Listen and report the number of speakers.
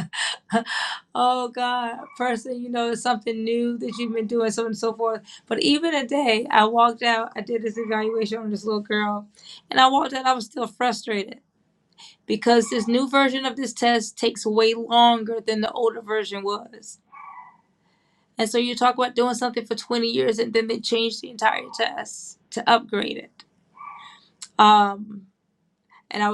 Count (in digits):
1